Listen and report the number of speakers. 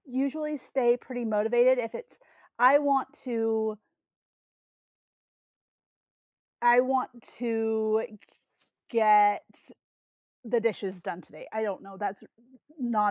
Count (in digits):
1